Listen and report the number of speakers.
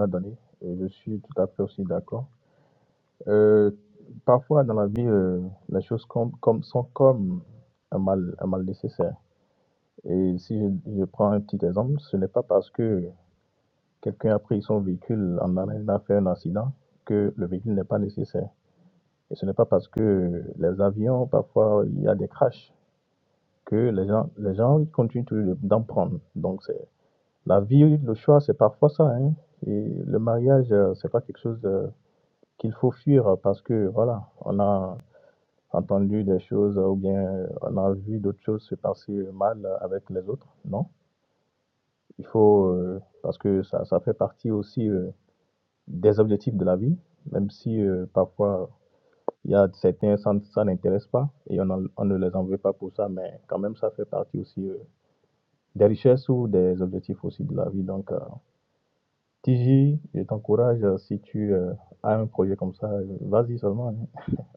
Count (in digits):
1